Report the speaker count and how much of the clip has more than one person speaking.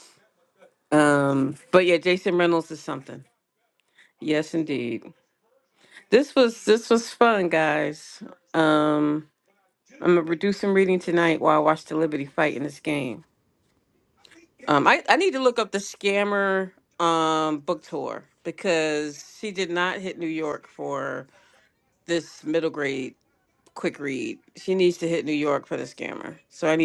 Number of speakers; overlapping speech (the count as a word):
one, no overlap